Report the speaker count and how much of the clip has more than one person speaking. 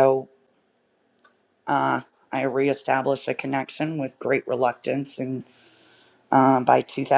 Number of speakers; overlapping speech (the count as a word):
one, no overlap